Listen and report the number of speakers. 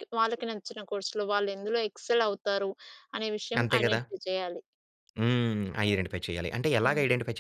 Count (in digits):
2